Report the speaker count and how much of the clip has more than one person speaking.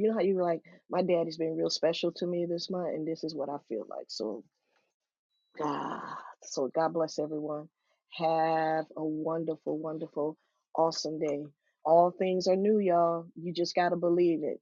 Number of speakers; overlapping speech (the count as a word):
one, no overlap